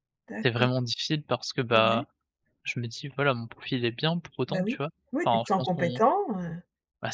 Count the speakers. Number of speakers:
2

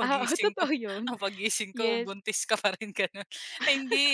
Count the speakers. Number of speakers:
2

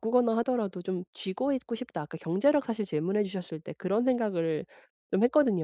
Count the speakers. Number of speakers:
1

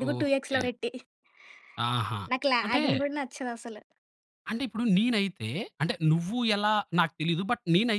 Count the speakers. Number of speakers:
2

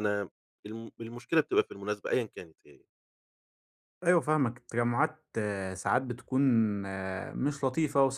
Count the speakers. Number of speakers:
2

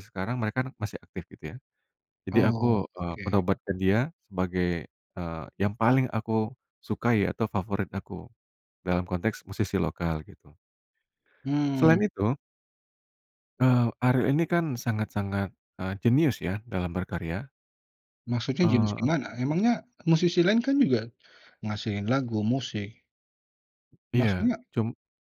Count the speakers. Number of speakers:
2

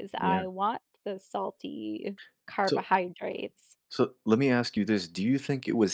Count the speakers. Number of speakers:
2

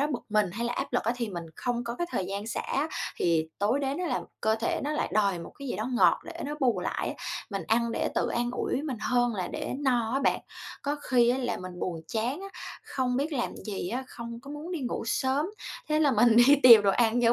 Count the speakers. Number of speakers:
1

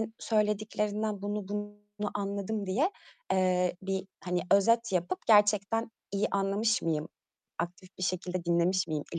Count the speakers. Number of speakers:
1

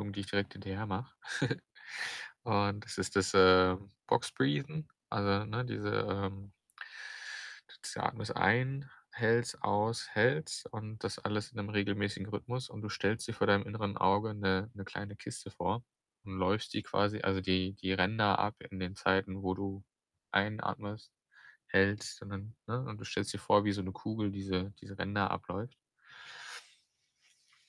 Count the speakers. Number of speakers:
1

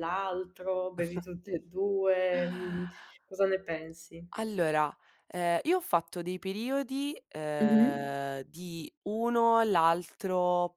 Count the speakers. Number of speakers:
2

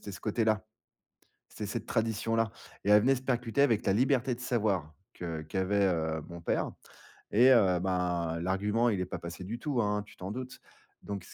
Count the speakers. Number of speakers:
1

